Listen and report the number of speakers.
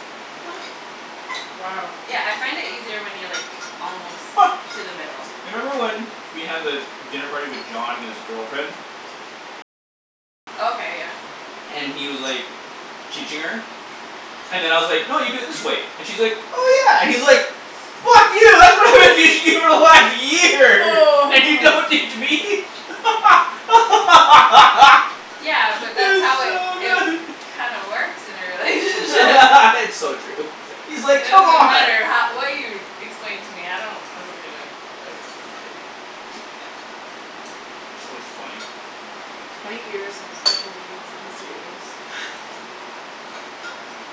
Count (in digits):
3